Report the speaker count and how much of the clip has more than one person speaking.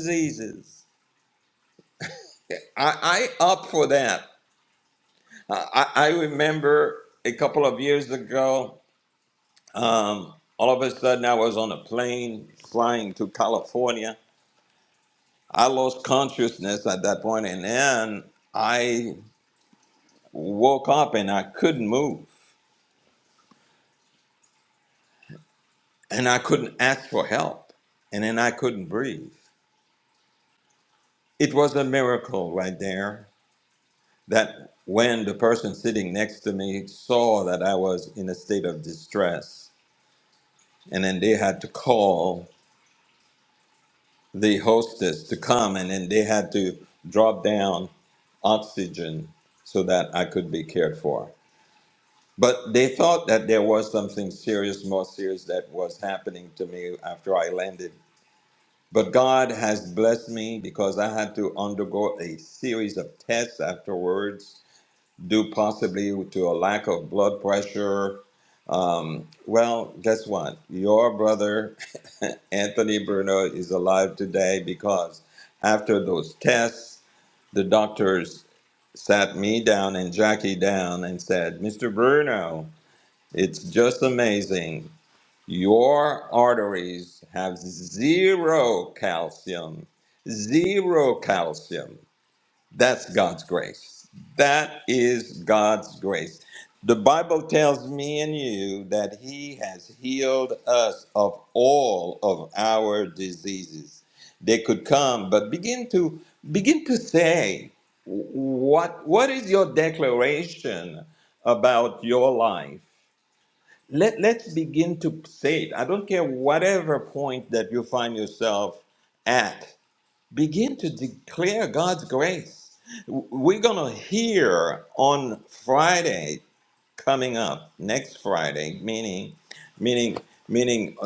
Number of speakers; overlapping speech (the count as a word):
one, no overlap